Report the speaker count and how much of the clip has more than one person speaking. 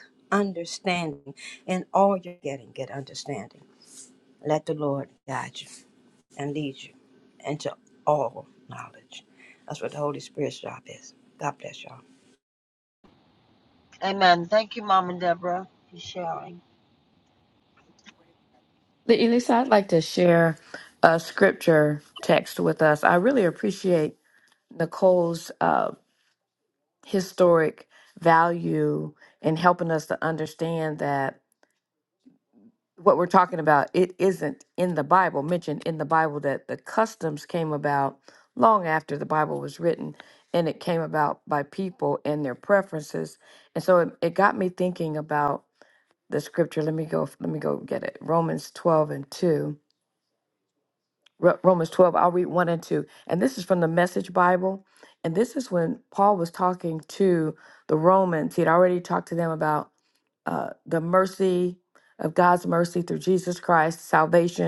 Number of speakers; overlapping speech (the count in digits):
3, no overlap